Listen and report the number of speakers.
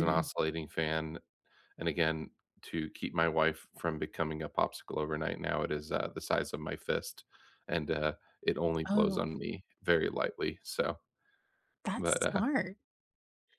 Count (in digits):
2